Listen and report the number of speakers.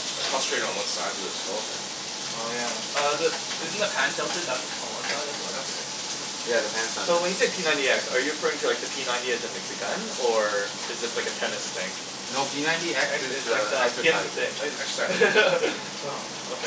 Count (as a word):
four